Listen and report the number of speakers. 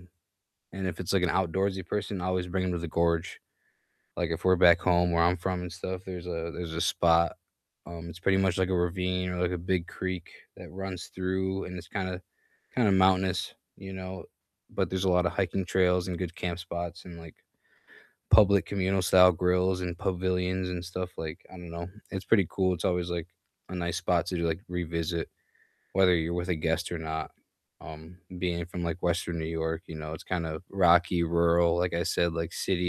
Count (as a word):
one